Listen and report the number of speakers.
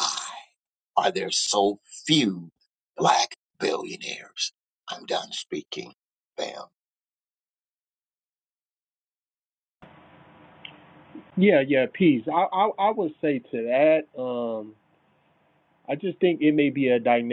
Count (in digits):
2